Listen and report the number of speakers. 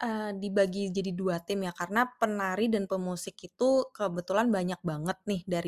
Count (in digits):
1